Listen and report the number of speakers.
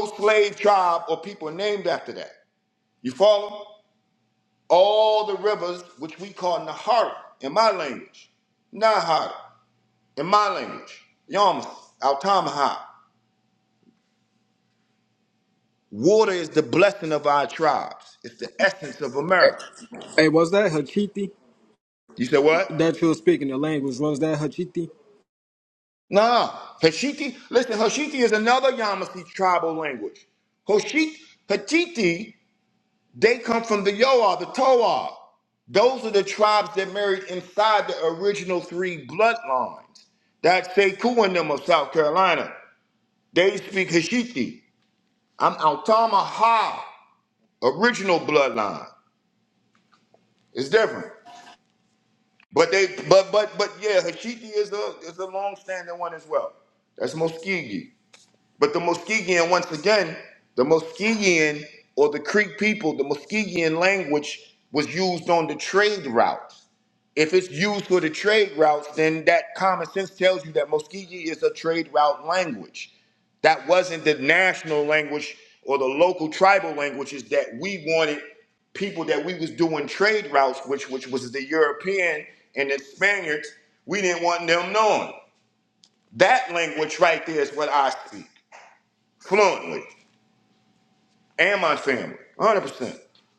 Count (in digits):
2